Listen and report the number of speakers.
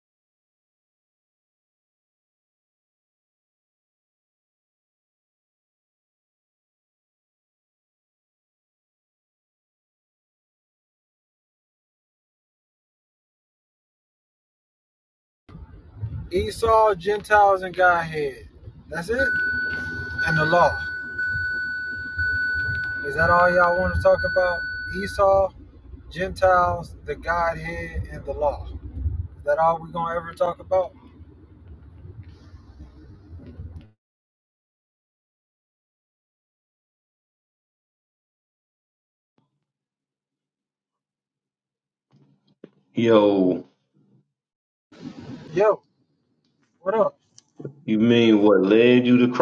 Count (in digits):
2